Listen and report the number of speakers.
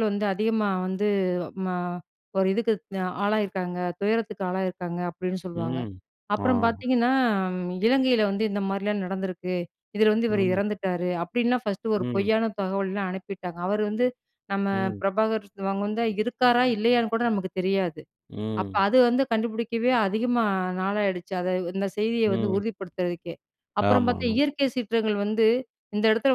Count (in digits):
2